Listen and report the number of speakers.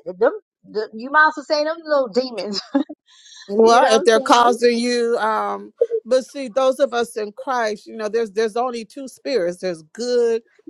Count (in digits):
2